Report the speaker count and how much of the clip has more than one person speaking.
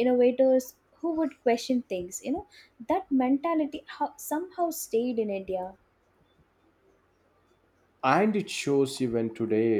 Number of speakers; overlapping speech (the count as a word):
two, no overlap